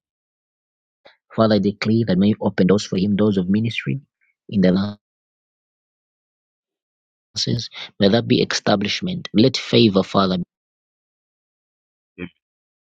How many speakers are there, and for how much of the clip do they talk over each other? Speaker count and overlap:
1, no overlap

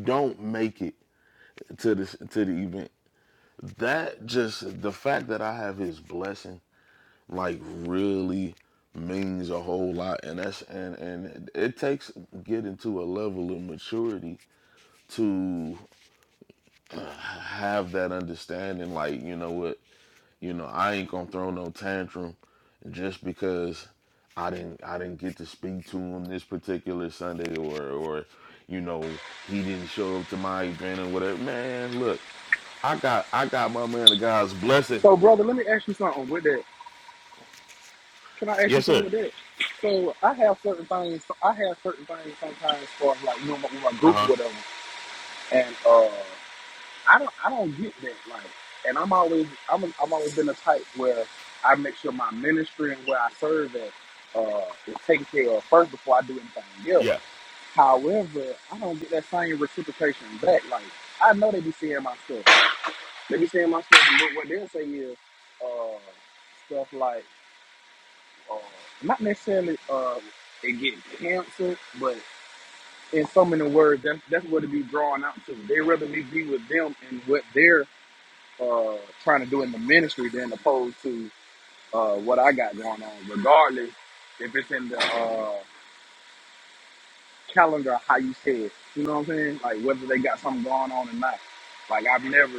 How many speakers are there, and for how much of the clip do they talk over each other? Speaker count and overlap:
2, about 1%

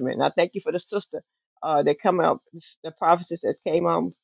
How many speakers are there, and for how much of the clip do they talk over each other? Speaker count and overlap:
1, no overlap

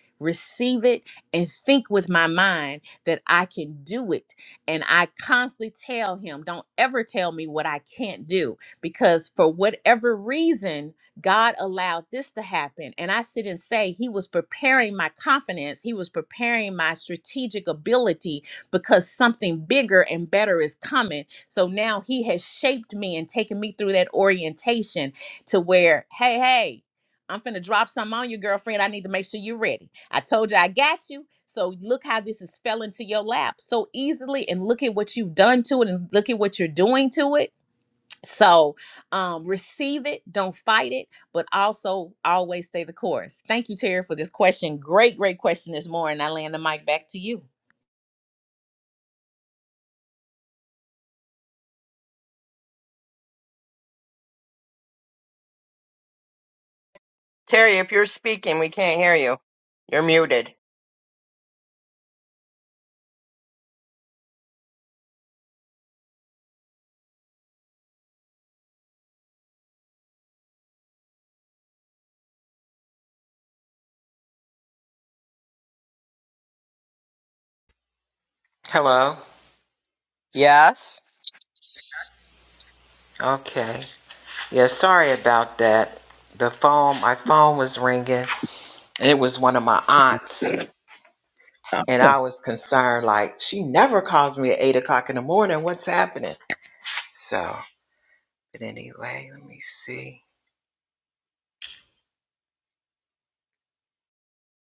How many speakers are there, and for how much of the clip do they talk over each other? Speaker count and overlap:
3, no overlap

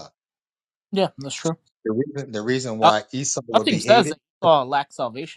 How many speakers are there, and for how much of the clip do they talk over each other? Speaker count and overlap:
2, about 13%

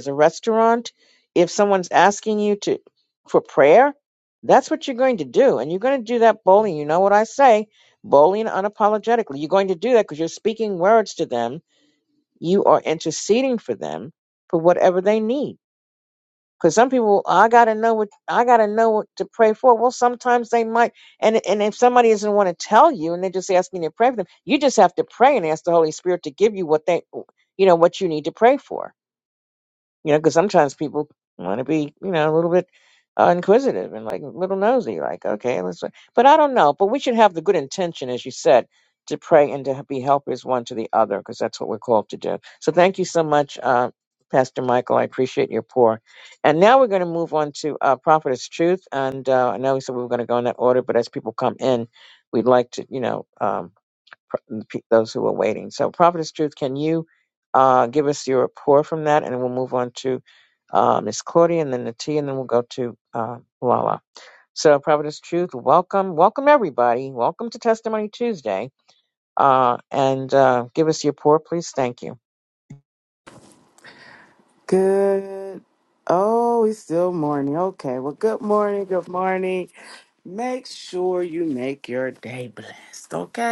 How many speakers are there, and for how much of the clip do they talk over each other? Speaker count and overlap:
2, no overlap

